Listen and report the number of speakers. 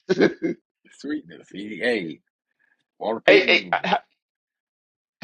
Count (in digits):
2